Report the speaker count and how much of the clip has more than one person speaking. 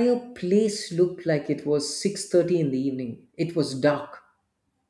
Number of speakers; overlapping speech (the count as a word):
one, no overlap